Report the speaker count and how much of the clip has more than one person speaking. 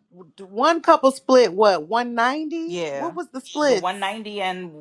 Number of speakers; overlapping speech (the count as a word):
two, about 13%